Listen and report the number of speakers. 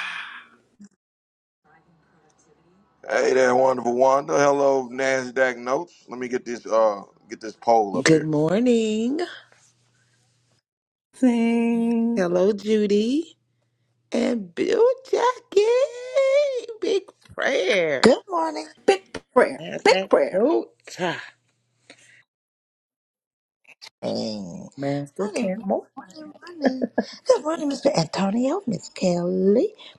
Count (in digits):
4